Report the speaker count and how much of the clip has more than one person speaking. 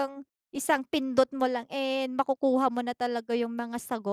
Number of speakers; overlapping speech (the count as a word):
one, no overlap